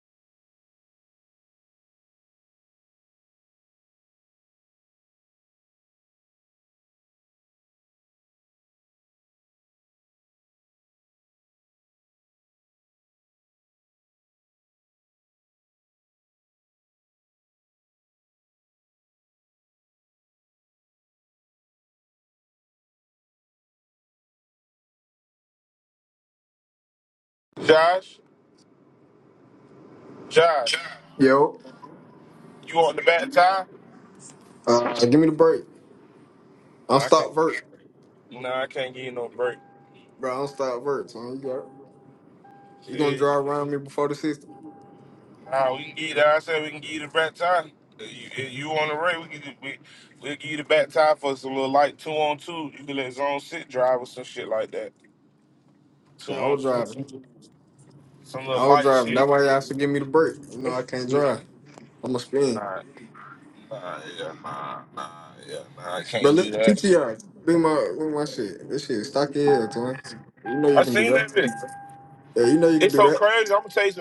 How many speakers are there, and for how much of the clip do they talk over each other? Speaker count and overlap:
2, about 5%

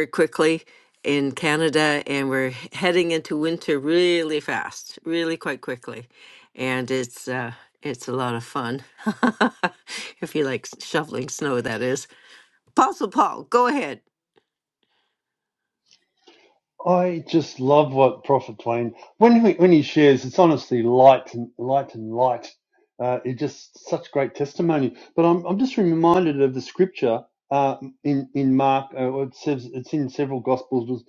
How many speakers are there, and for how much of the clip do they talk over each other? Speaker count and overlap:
2, no overlap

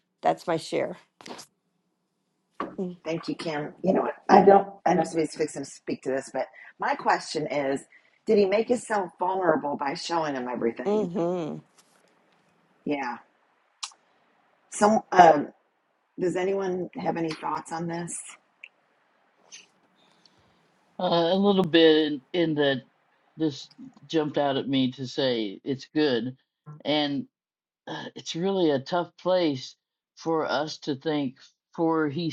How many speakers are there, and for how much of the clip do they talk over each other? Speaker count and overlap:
3, about 1%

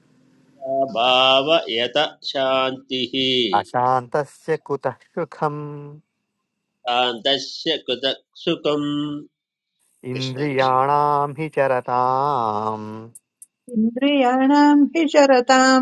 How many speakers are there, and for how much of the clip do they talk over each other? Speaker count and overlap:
3, about 4%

